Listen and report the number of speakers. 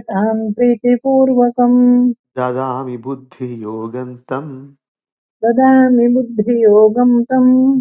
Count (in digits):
2